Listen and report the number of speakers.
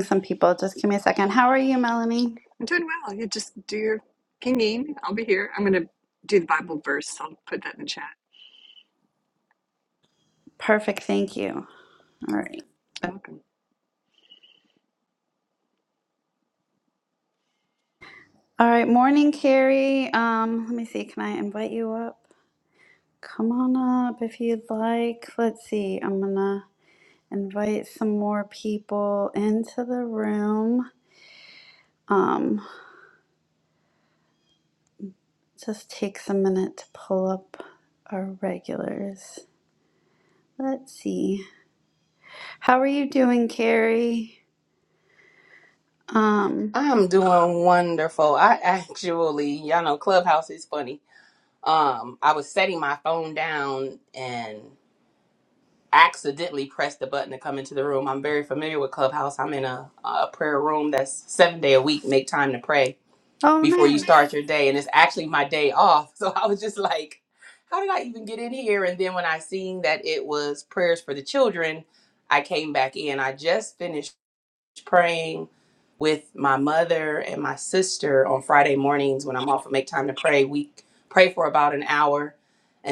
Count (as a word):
three